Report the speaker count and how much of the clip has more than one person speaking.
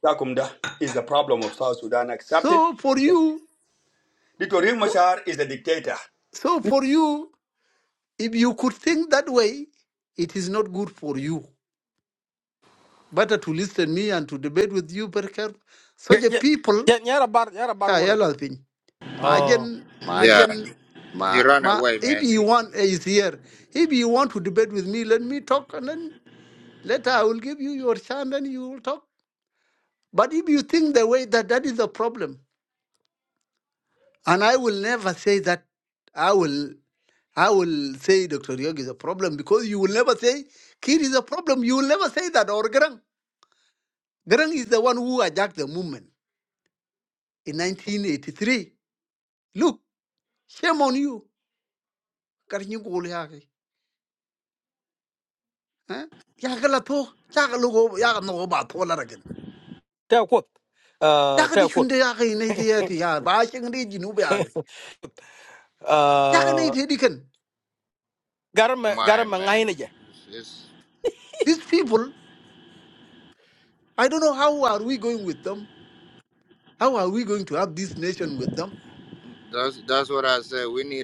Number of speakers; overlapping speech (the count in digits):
4, about 6%